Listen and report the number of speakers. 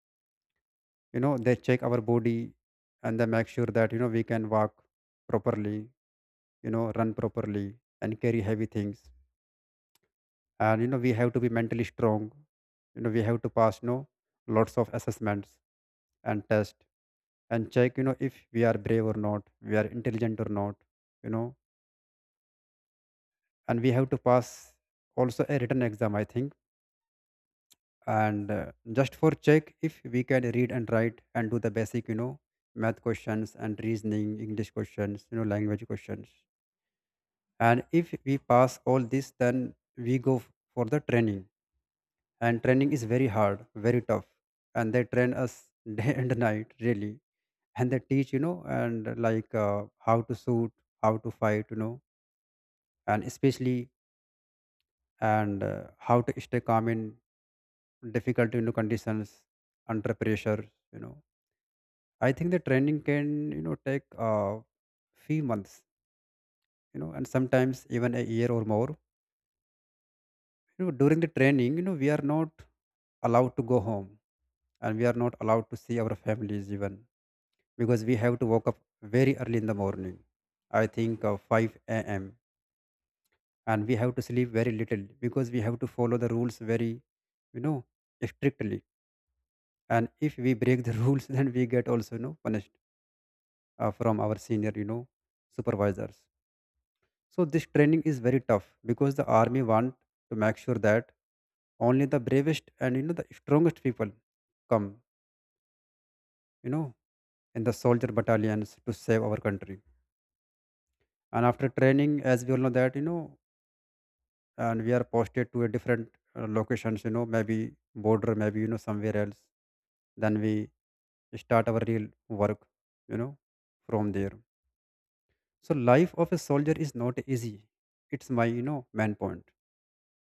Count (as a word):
one